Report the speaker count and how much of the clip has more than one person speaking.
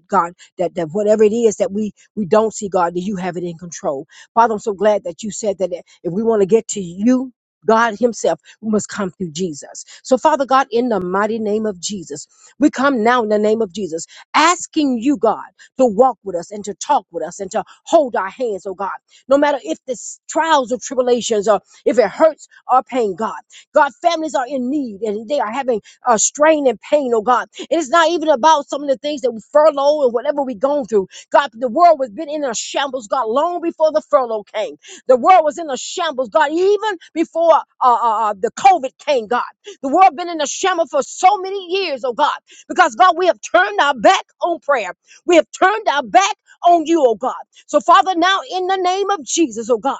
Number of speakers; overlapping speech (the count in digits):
1, no overlap